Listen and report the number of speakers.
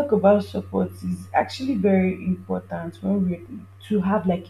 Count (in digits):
1